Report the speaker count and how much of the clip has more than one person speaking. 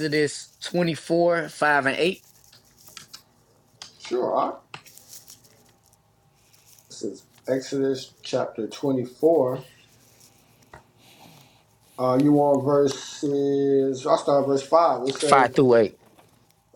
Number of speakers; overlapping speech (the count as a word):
two, about 3%